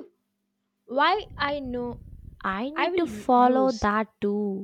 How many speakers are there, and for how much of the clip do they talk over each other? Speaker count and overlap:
two, about 21%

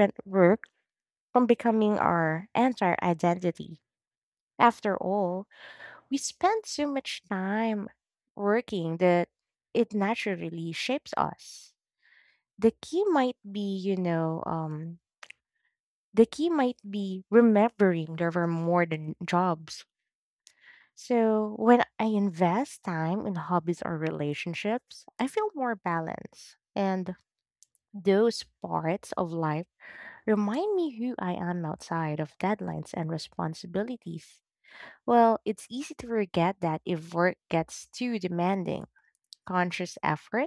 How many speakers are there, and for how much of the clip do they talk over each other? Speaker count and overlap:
one, no overlap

